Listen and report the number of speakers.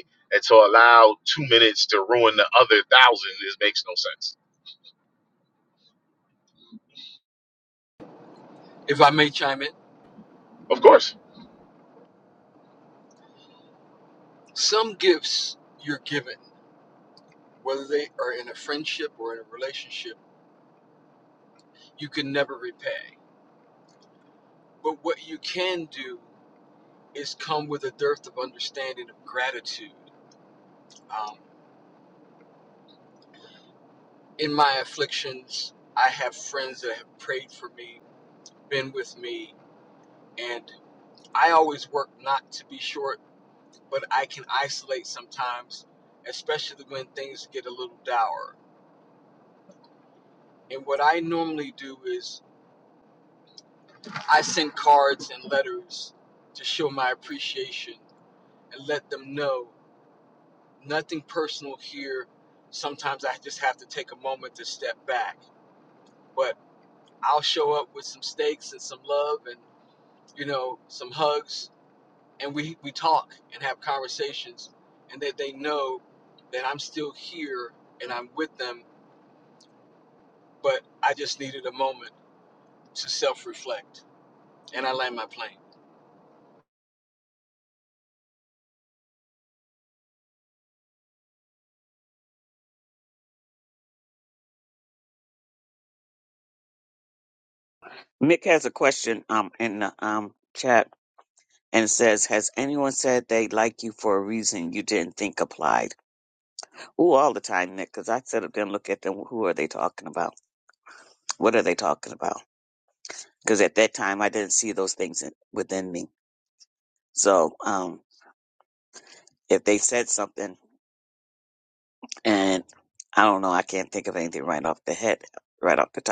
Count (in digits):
3